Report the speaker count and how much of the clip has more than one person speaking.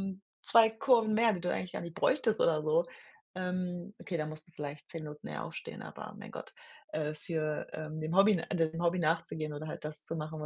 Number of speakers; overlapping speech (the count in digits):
1, no overlap